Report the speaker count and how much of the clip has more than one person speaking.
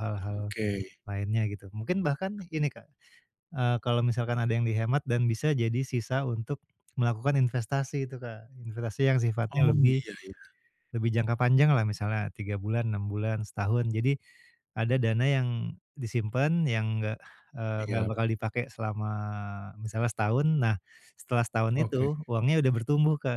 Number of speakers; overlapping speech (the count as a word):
two, about 5%